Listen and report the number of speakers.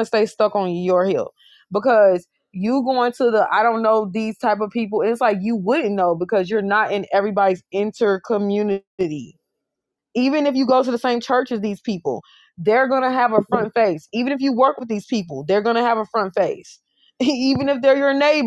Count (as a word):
one